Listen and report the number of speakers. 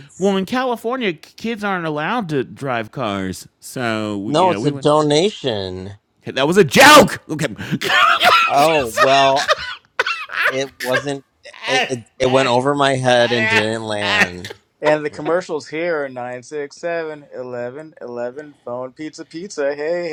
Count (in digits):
3